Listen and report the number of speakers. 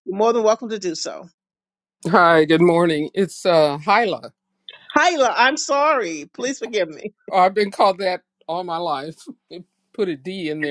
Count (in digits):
2